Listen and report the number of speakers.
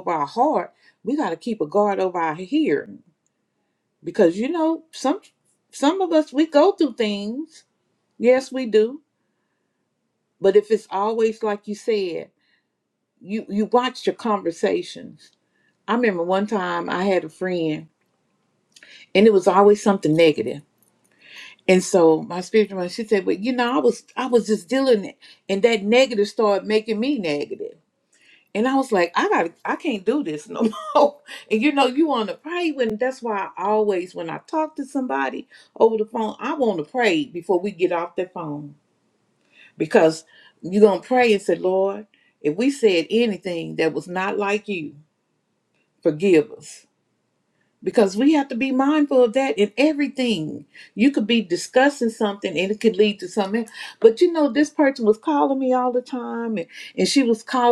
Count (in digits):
1